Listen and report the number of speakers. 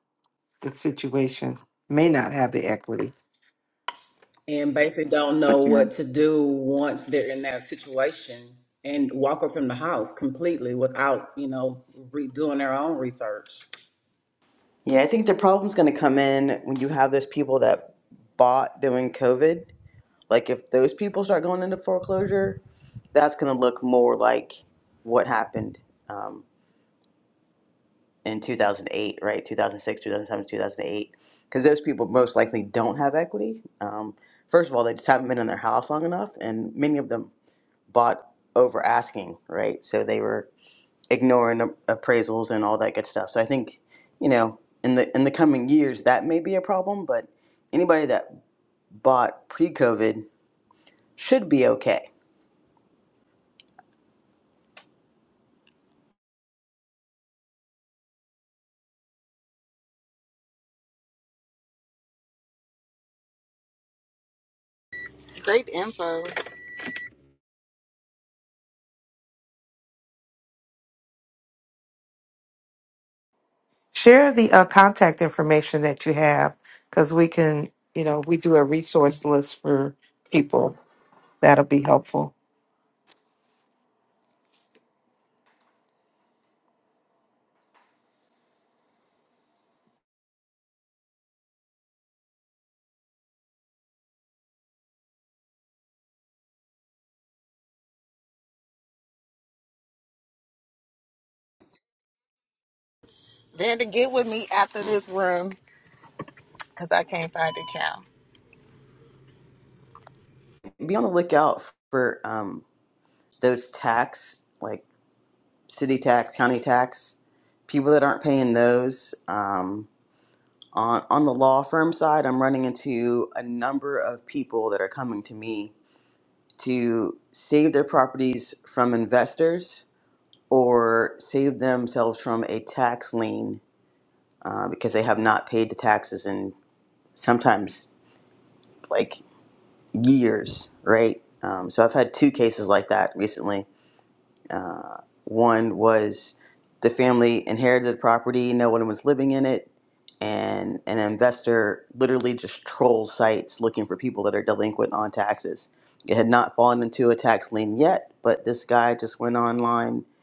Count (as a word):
four